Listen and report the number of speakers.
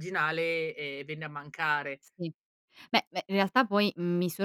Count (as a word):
two